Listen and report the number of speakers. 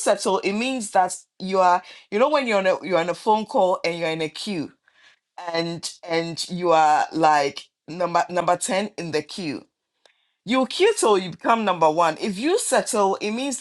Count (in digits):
1